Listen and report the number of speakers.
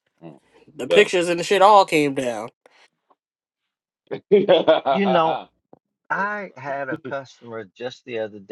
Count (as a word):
three